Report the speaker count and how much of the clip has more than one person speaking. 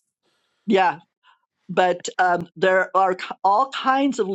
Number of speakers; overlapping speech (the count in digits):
1, no overlap